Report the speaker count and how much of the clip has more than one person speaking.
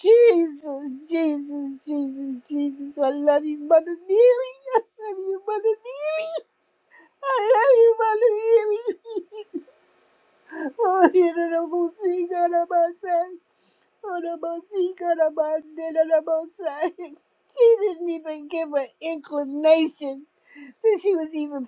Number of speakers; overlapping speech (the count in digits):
1, no overlap